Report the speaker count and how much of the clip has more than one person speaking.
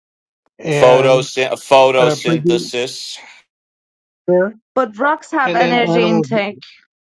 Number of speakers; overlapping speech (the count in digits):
3, about 28%